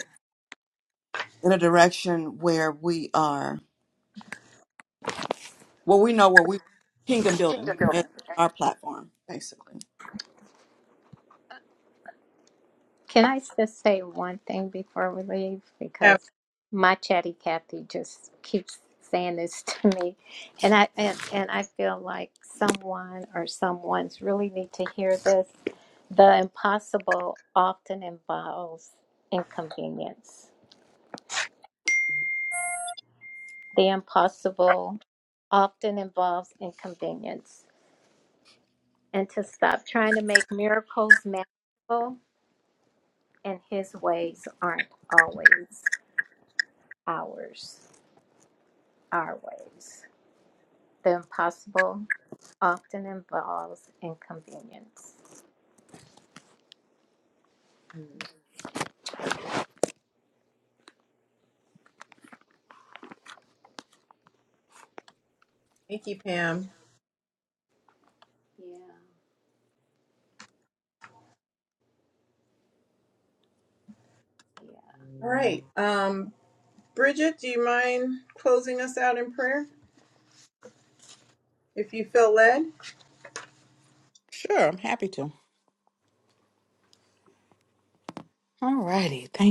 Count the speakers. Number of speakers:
4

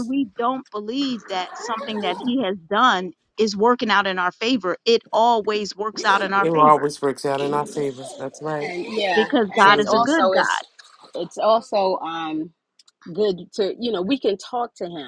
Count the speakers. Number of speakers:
3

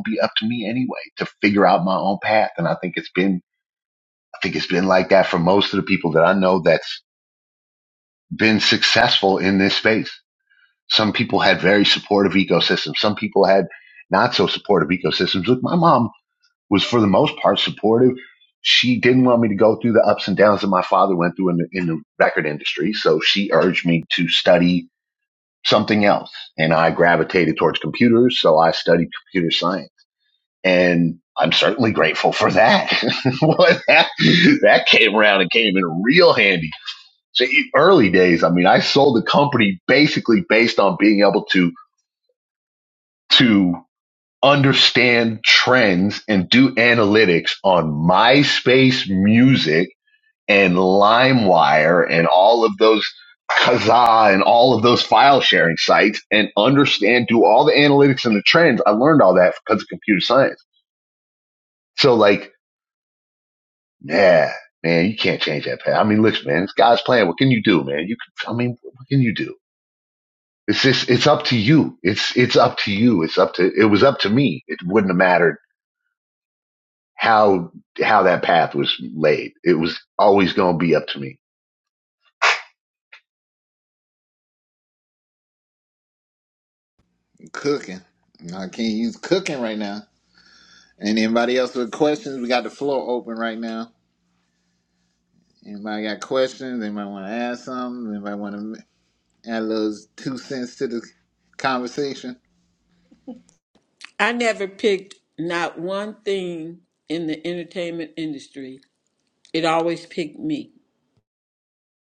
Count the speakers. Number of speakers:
3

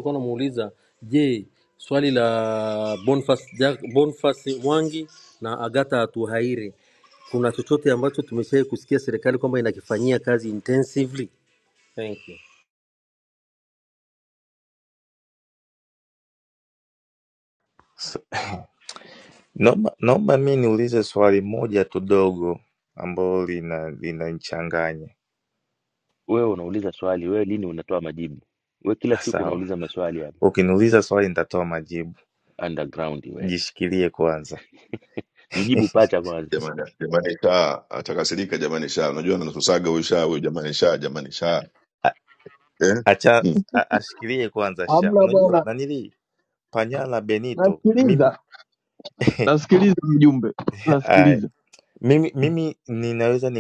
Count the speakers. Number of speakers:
5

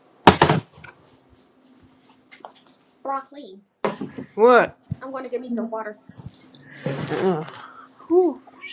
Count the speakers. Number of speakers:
2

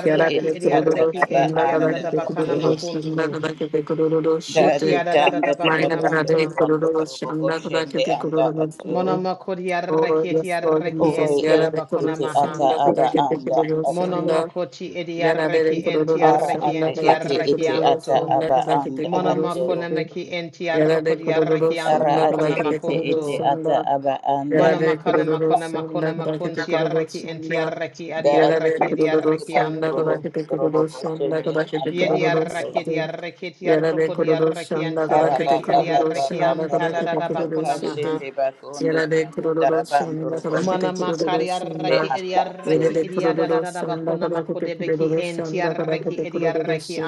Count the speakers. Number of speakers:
3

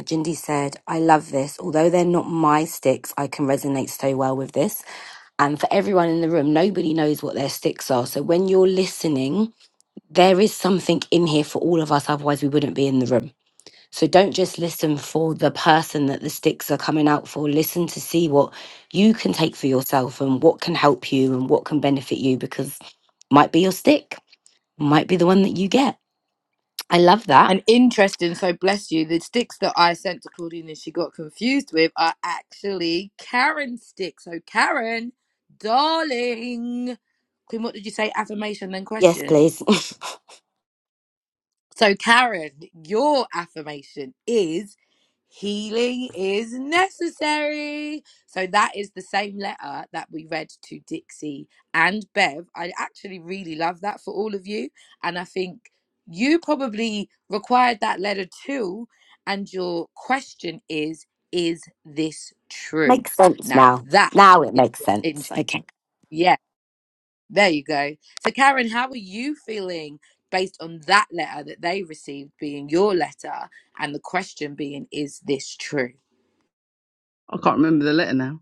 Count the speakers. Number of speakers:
3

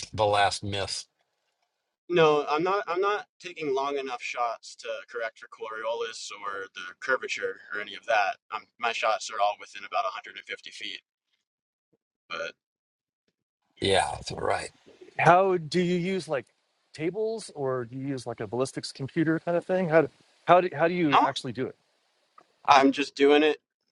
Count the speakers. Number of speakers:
3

